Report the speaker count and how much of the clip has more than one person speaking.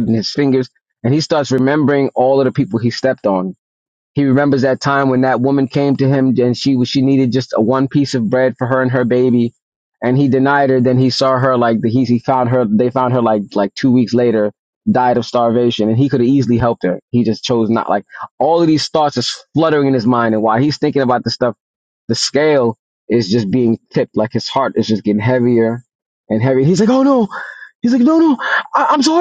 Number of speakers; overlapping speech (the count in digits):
1, no overlap